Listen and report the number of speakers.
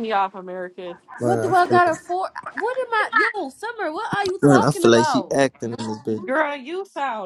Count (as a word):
three